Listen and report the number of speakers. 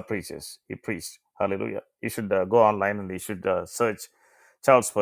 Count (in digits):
1